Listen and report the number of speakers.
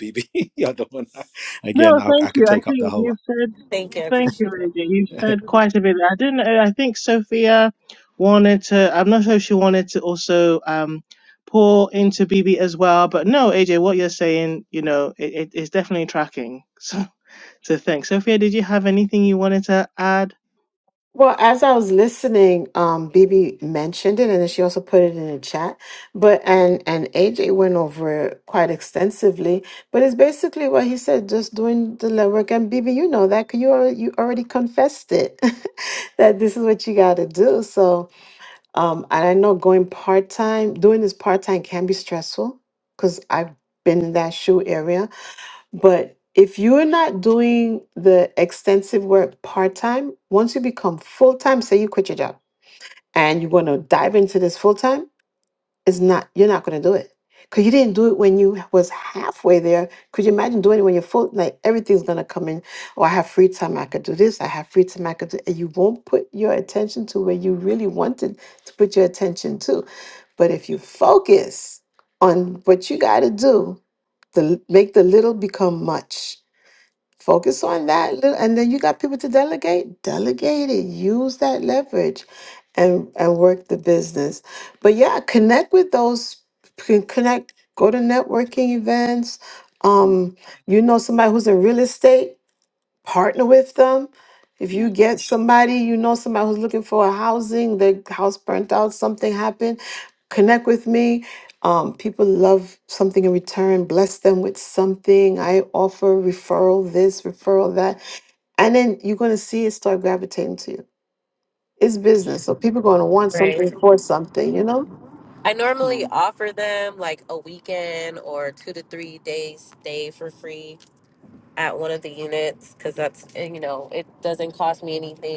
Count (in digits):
4